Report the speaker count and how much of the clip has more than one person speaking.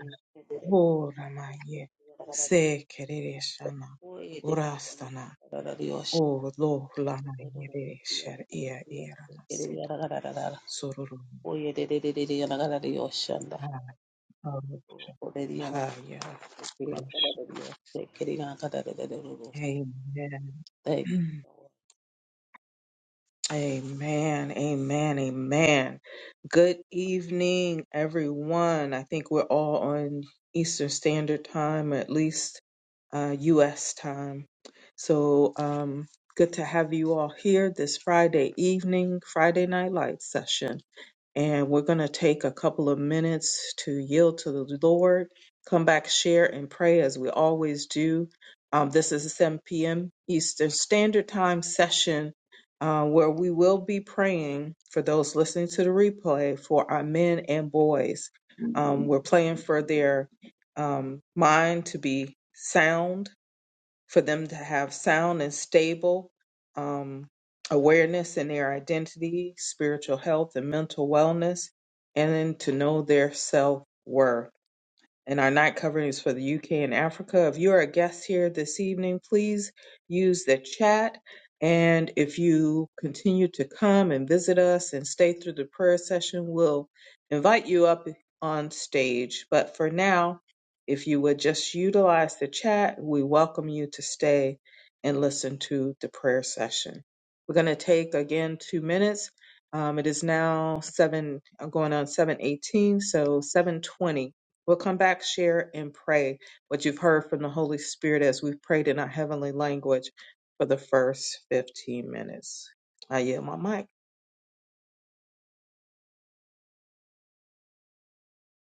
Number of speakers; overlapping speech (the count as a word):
two, about 1%